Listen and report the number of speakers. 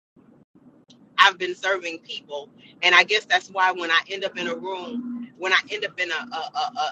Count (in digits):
1